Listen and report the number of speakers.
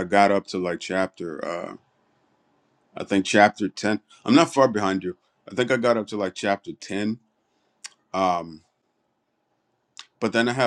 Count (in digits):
1